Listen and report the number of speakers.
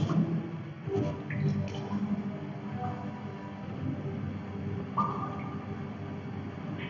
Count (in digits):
0